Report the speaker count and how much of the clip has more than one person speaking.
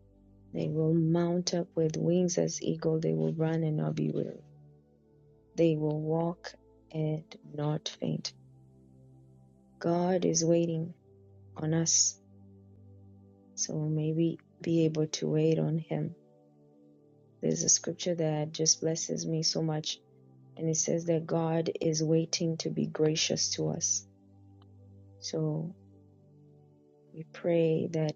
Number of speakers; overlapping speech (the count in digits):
1, no overlap